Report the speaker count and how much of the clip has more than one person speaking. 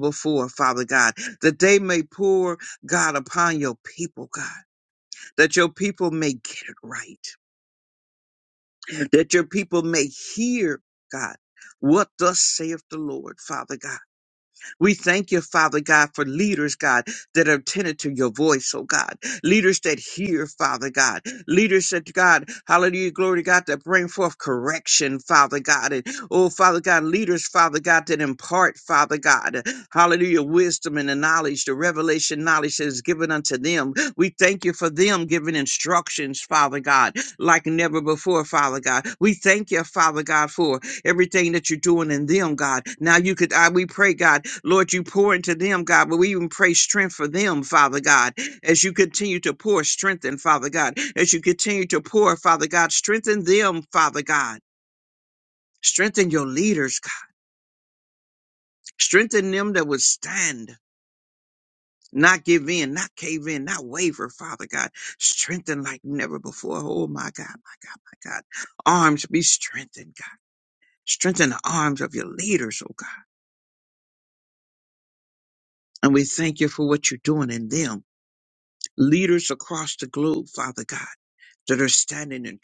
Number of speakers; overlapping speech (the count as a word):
one, no overlap